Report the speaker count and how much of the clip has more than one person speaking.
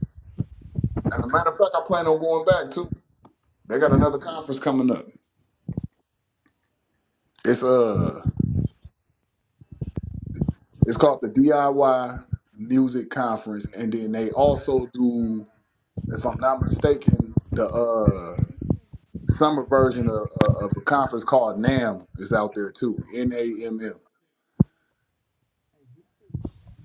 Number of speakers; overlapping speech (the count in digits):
1, no overlap